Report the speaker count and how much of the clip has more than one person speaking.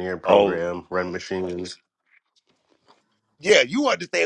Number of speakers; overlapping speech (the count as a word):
two, about 8%